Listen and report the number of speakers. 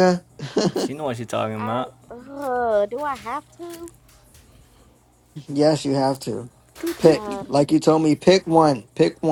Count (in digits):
3